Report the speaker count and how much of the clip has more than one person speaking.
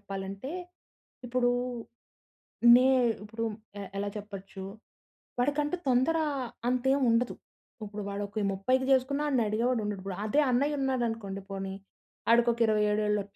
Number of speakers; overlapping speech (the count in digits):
1, no overlap